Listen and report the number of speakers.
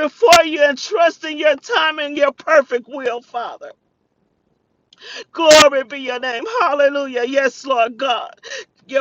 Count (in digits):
1